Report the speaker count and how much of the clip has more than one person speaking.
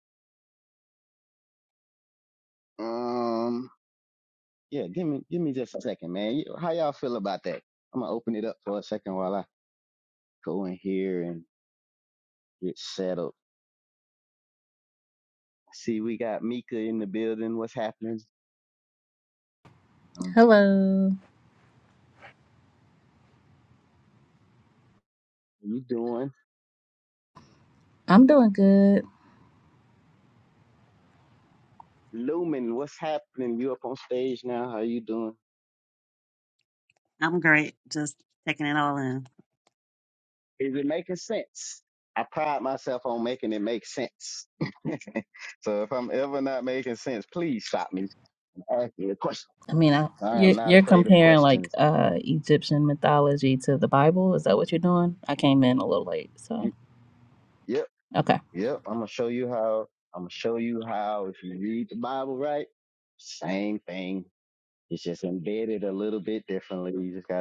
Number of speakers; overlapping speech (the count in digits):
3, about 2%